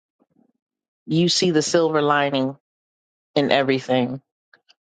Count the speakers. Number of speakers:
1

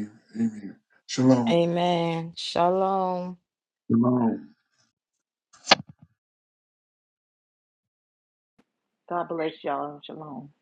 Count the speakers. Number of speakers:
3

